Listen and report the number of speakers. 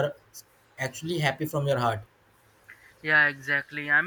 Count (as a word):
two